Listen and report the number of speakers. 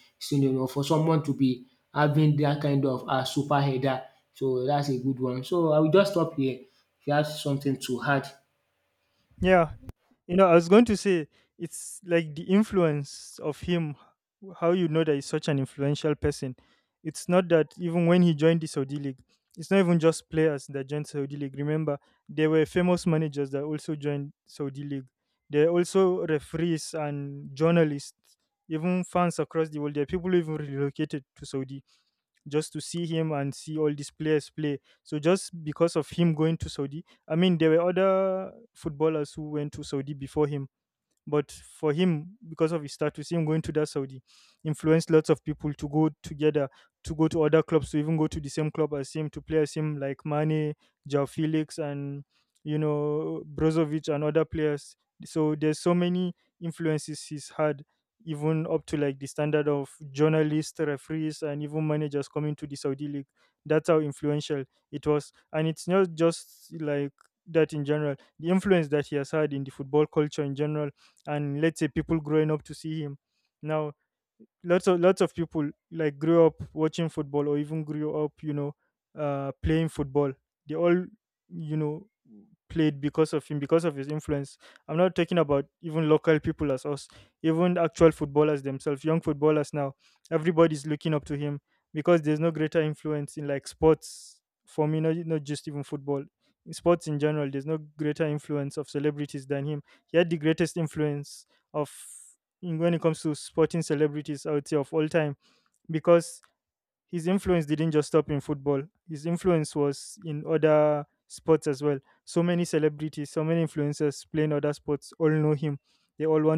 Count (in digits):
2